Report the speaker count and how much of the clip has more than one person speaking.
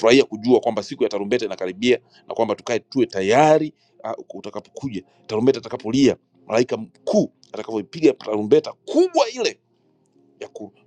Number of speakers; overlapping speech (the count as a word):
one, no overlap